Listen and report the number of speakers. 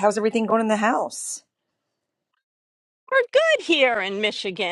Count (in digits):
2